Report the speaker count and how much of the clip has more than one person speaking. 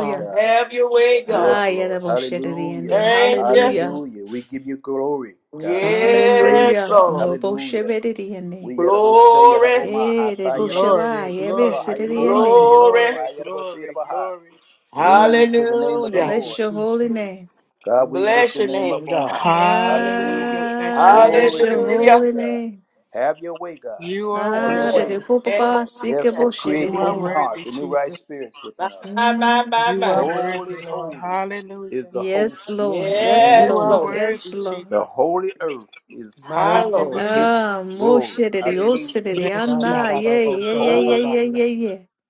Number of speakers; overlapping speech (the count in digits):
4, about 71%